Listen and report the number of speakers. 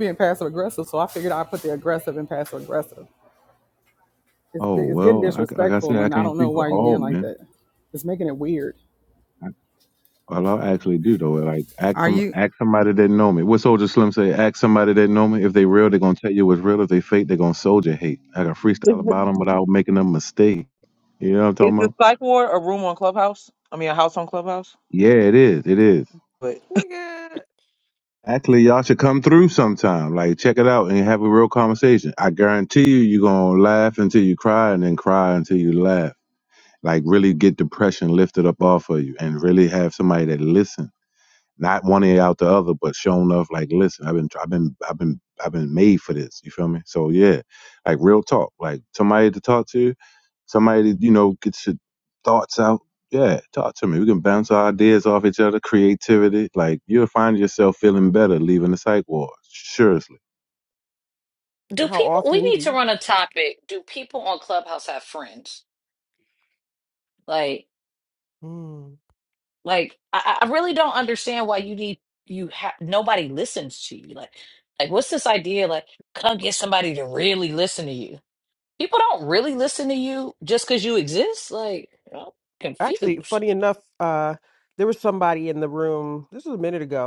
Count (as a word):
five